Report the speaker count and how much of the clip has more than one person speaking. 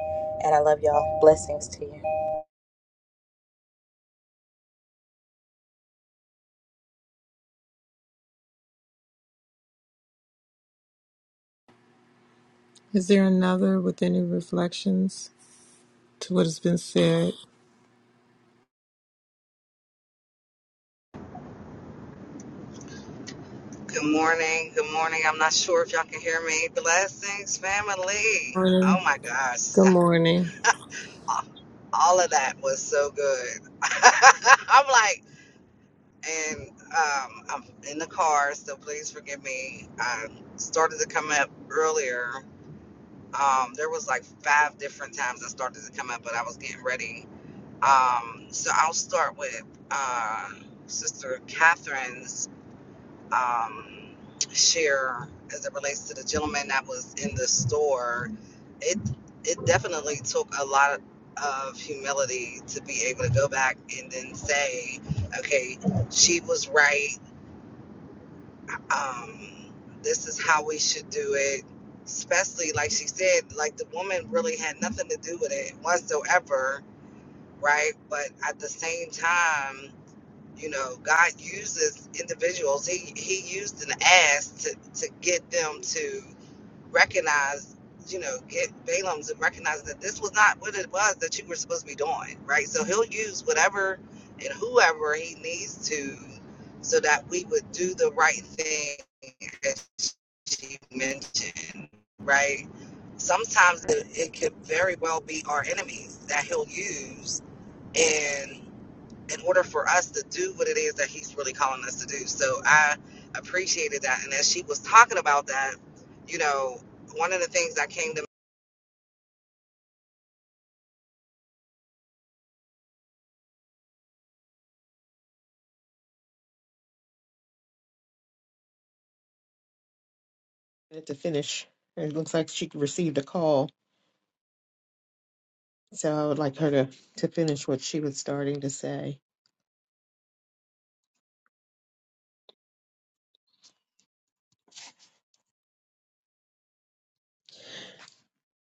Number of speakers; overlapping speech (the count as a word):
four, under 1%